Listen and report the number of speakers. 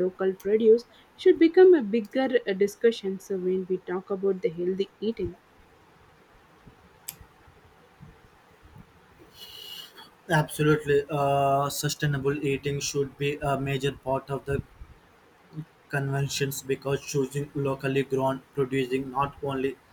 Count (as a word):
two